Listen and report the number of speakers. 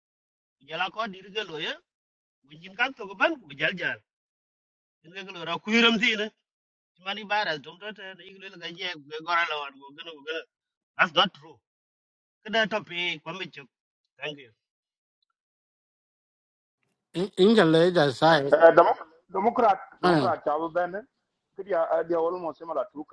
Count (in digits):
3